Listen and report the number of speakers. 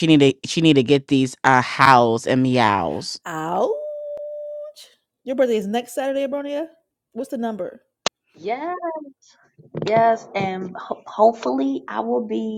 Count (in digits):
3